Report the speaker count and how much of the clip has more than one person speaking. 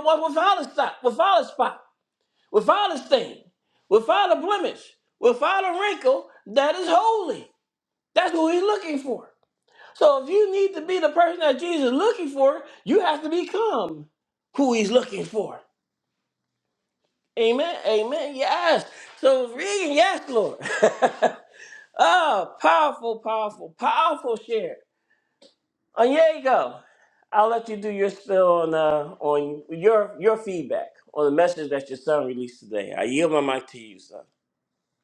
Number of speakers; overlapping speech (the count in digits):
1, no overlap